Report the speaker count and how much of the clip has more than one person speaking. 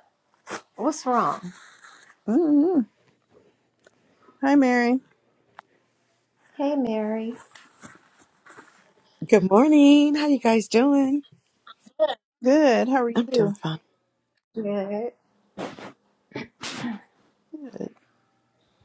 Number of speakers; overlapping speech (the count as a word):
three, about 2%